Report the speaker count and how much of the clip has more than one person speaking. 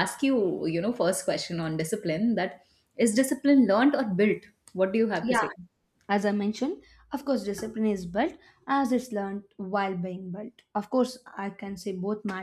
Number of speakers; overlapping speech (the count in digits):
2, about 2%